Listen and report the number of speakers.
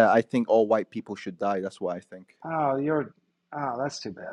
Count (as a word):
two